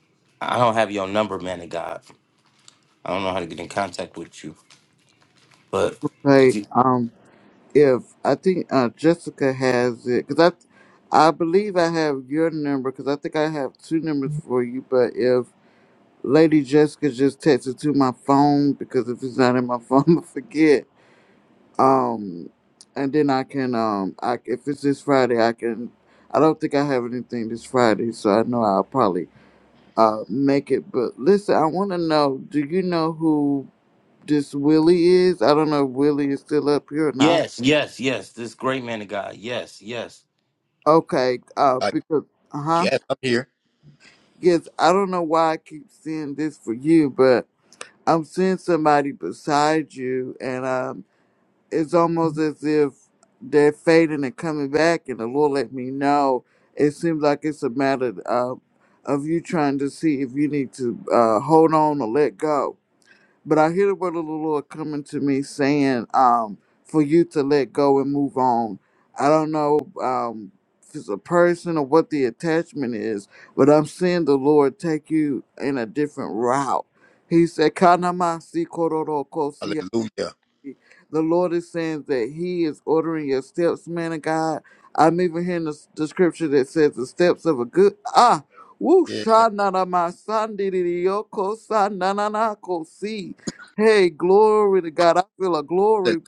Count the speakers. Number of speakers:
three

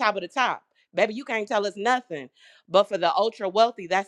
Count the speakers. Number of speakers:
one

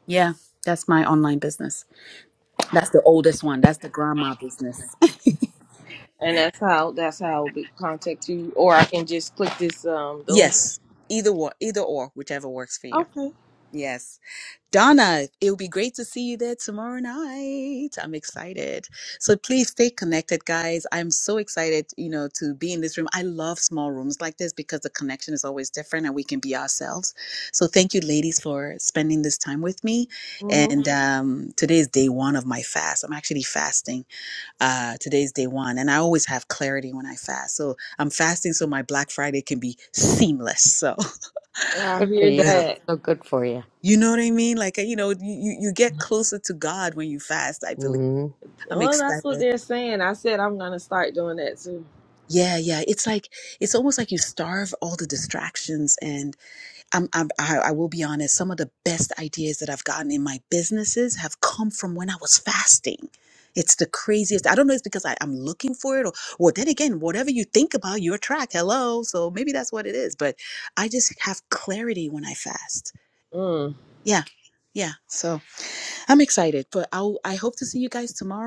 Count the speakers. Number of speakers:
three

